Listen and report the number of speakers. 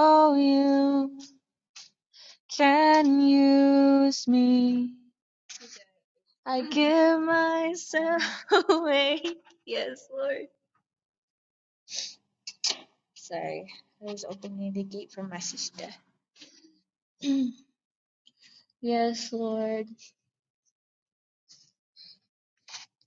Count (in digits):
1